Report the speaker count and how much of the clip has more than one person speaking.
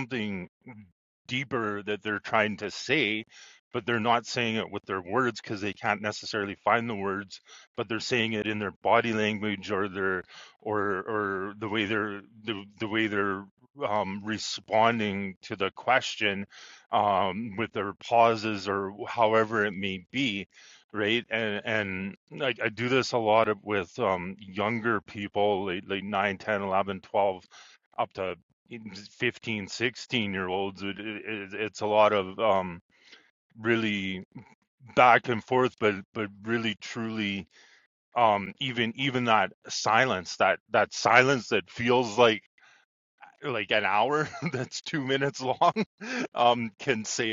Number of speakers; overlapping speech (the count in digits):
1, no overlap